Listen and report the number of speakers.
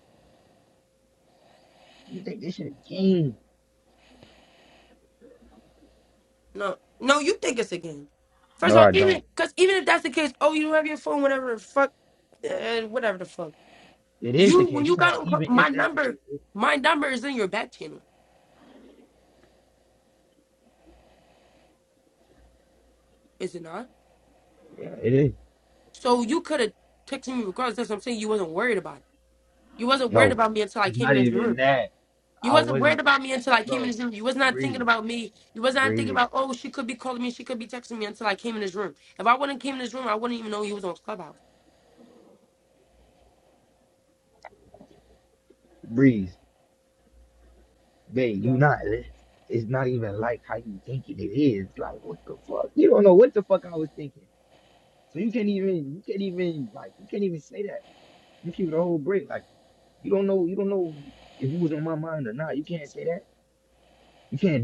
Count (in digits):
2